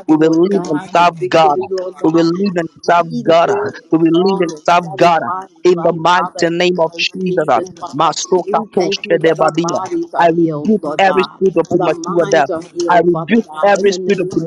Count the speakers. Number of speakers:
2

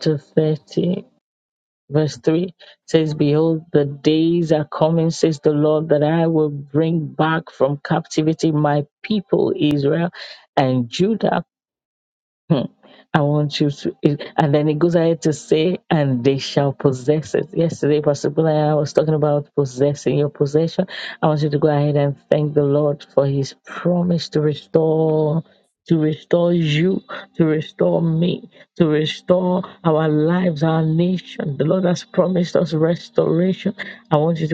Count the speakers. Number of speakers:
1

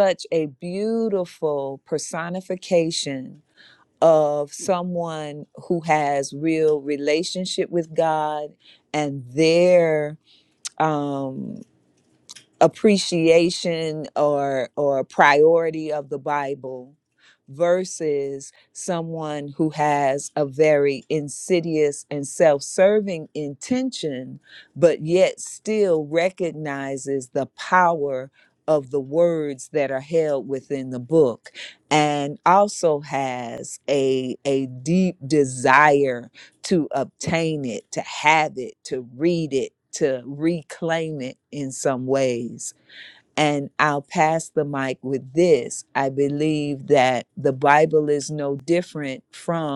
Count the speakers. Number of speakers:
1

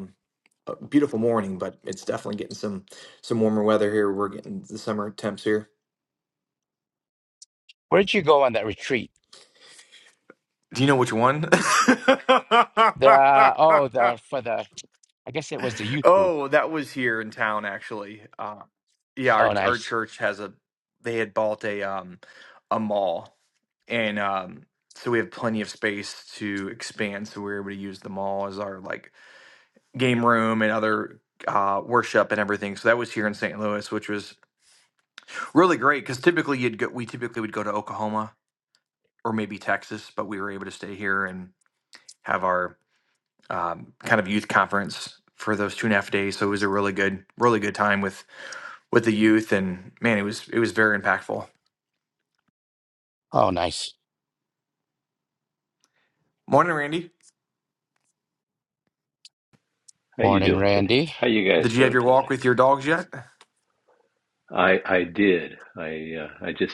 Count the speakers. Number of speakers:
3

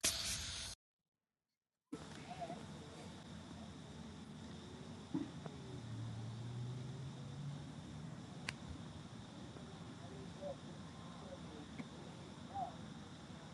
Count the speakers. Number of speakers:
0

